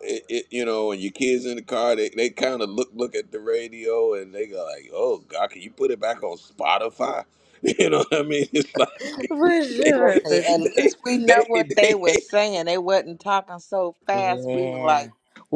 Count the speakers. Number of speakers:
three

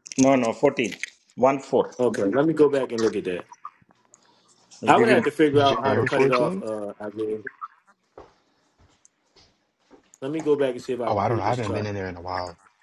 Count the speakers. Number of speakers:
three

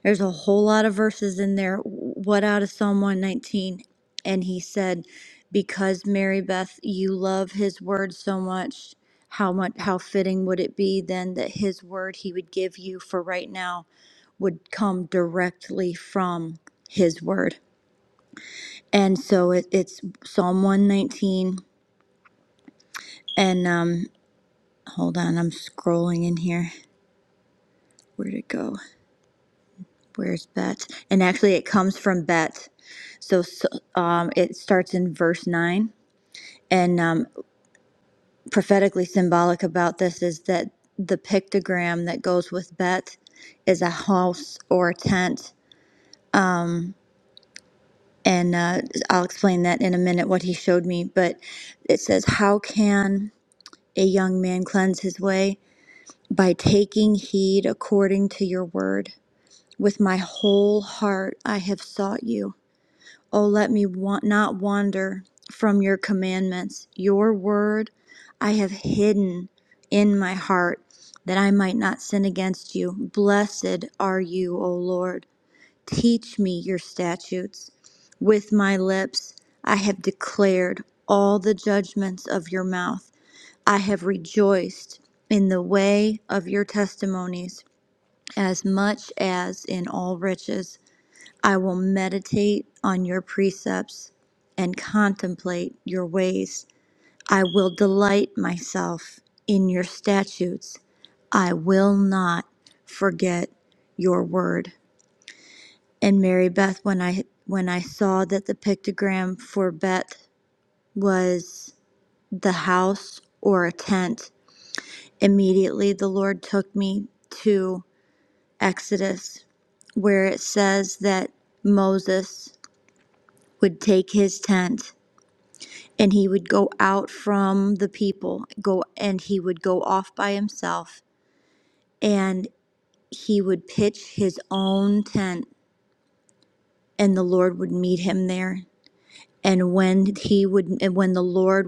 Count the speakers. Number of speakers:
one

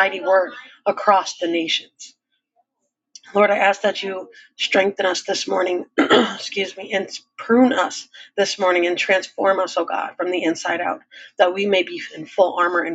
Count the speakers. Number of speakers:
one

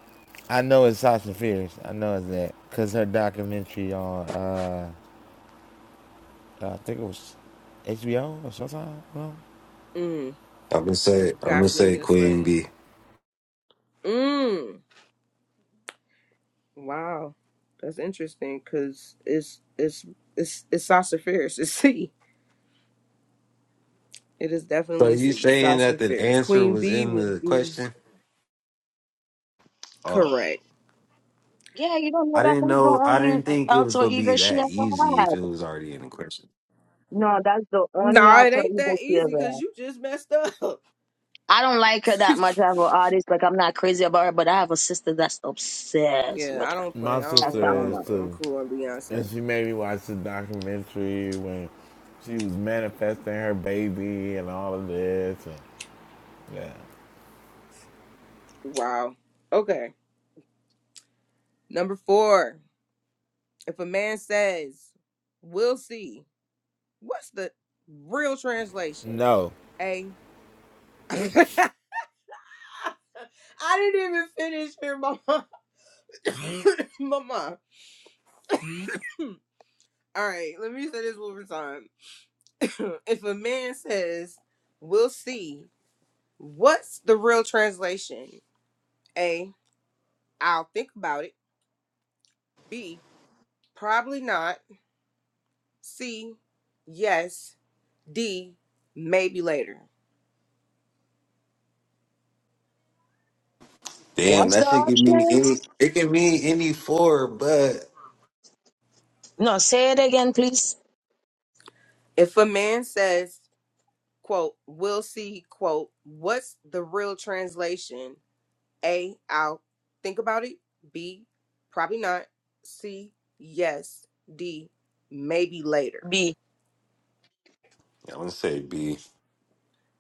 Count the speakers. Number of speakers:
four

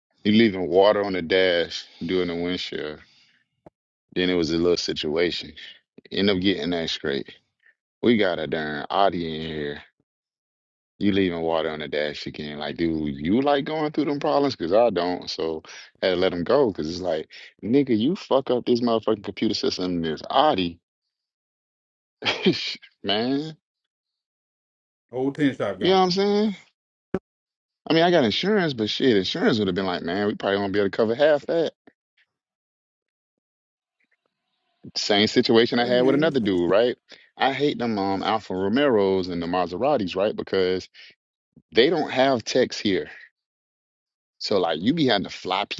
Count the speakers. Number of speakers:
two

